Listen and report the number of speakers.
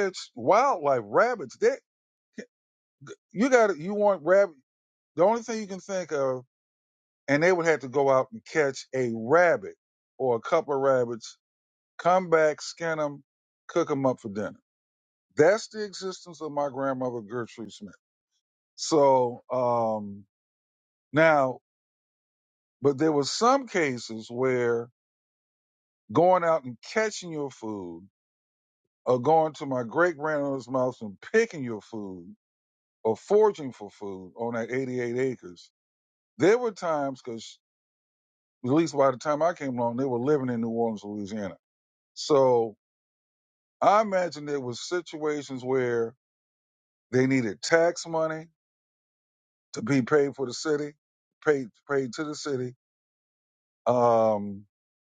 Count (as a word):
one